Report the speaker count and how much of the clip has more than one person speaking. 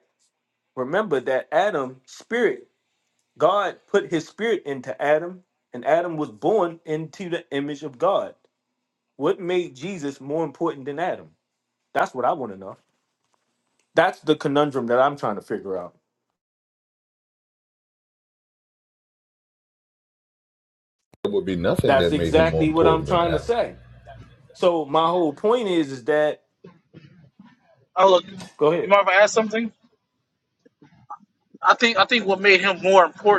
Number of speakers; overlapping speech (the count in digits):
3, about 5%